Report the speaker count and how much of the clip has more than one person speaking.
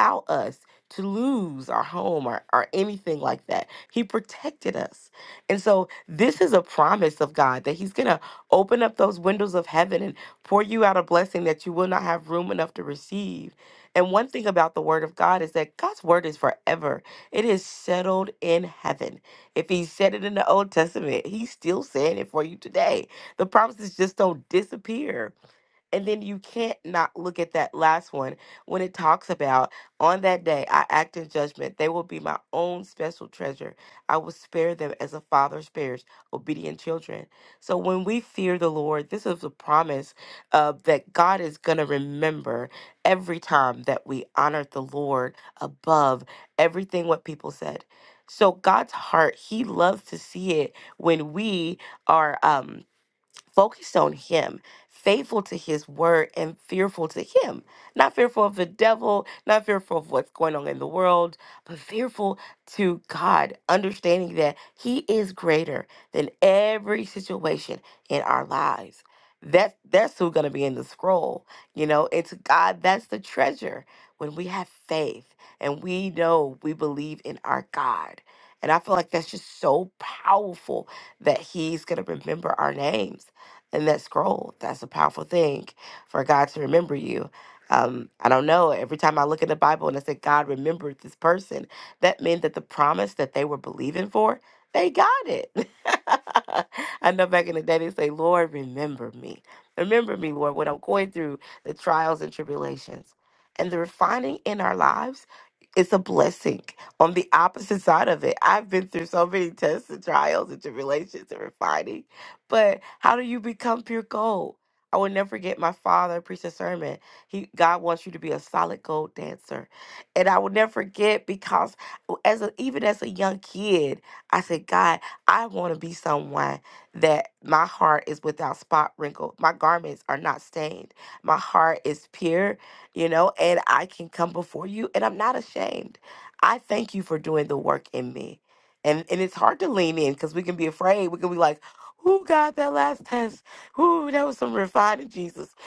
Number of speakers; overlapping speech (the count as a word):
one, no overlap